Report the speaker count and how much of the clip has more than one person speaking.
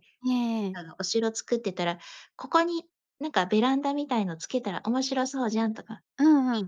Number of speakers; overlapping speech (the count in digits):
2, no overlap